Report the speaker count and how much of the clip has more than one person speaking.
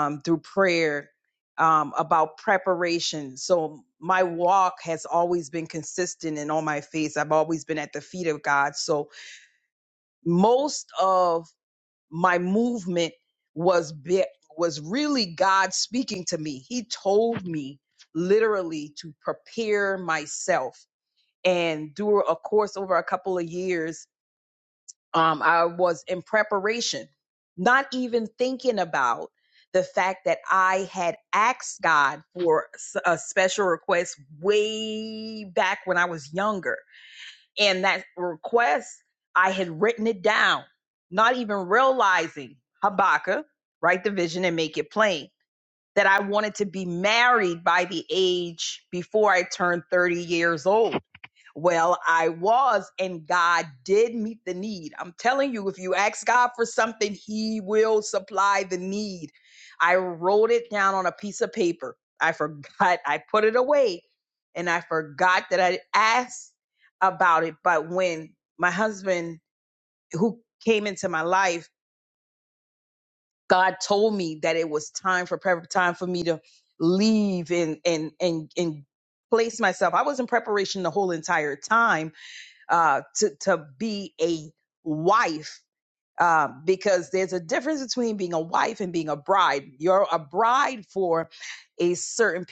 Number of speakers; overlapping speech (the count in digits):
1, no overlap